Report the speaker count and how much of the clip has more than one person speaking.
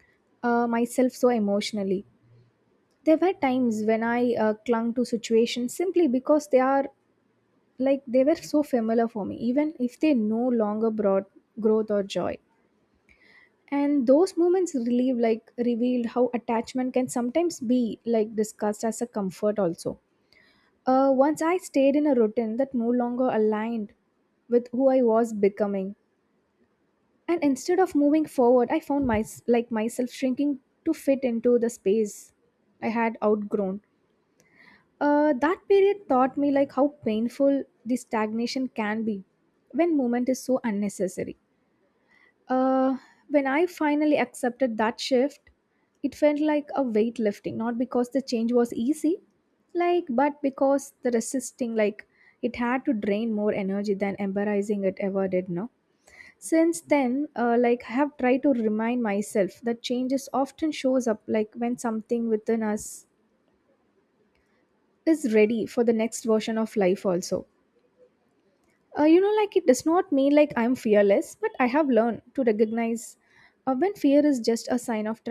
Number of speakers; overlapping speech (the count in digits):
1, no overlap